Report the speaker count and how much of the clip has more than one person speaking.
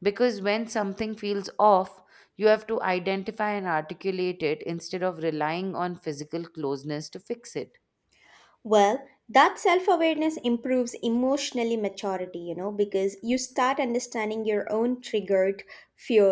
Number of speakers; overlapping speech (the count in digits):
2, no overlap